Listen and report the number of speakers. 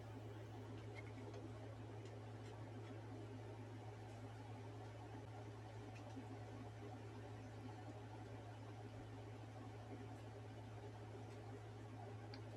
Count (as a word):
zero